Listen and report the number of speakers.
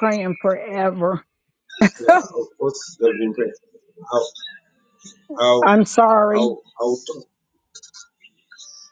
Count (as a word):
two